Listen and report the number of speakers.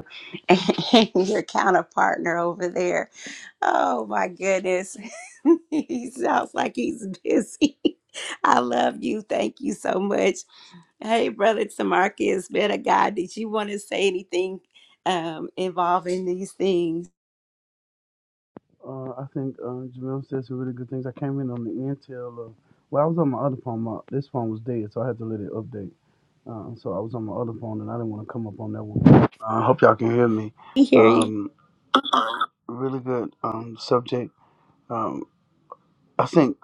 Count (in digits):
2